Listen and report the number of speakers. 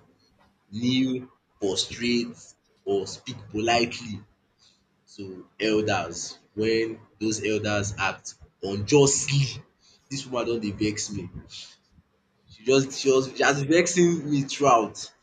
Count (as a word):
one